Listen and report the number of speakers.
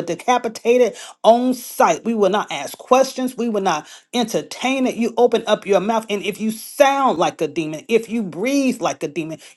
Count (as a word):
one